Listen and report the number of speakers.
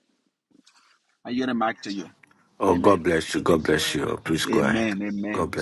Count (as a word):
two